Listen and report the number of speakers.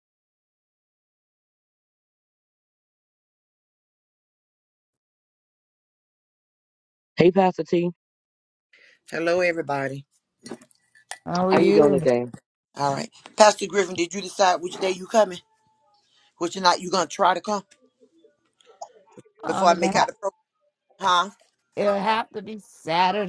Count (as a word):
three